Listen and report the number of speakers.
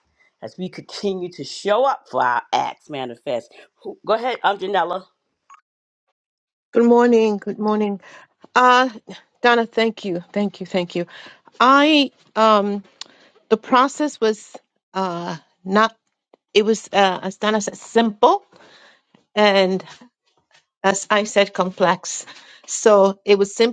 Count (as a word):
two